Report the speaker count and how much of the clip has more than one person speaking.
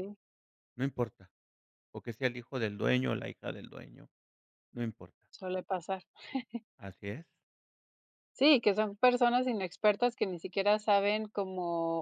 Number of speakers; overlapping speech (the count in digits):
2, no overlap